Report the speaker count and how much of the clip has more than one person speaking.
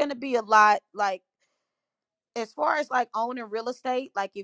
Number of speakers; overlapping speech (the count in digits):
1, no overlap